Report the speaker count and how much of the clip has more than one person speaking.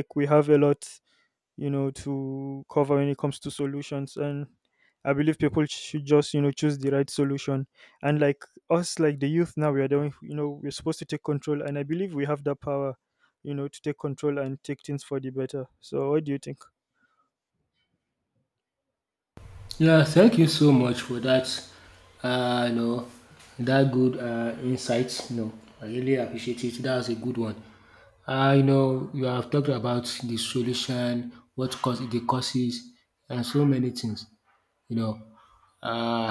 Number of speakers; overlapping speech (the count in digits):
2, no overlap